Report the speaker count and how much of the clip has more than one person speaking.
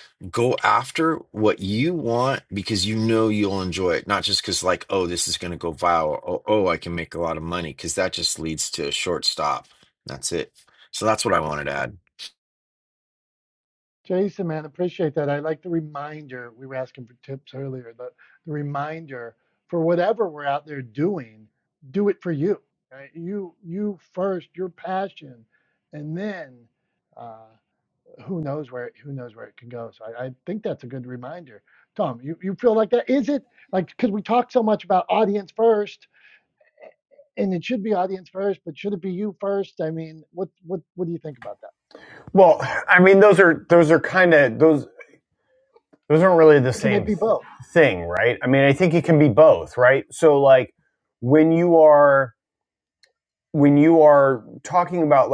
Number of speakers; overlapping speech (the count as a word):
three, about 1%